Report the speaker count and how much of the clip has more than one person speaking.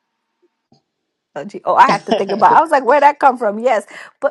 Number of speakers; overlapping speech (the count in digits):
1, no overlap